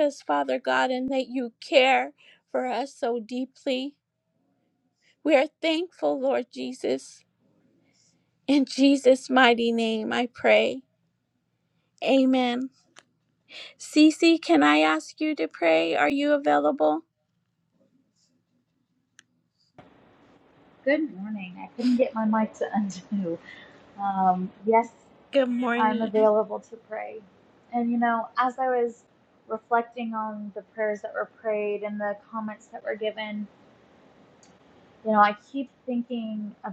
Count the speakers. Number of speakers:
2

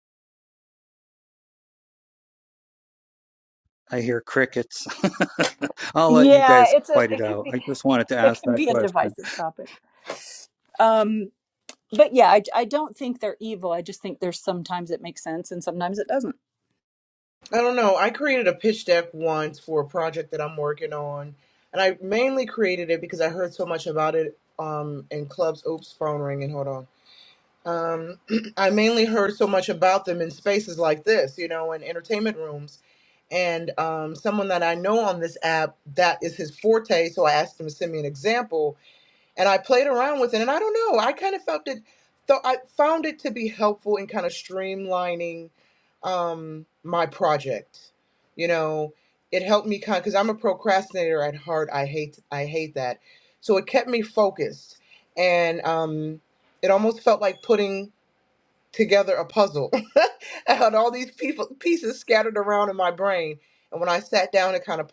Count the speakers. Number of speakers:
3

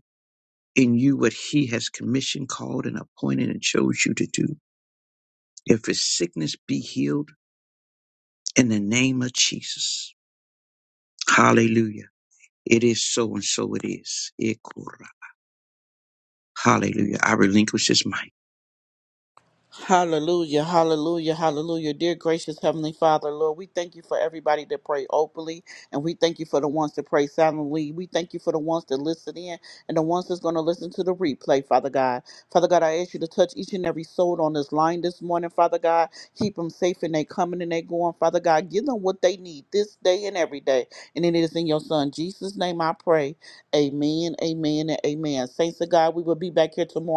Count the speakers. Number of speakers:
2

